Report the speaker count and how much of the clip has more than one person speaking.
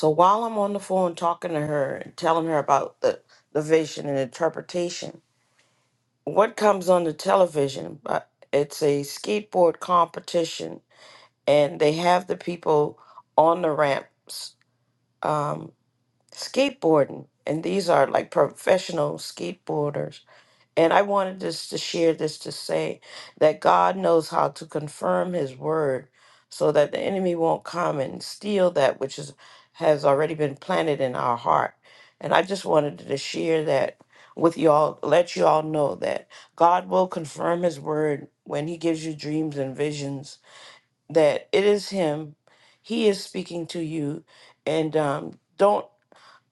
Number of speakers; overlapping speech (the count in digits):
1, no overlap